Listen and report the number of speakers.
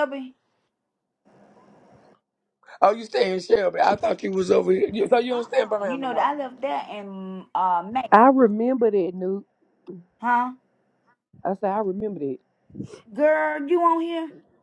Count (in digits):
3